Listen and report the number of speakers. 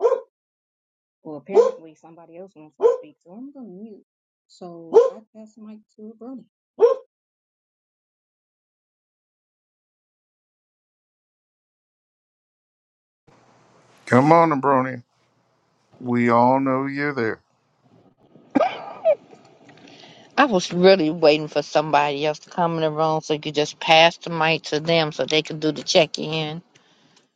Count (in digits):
3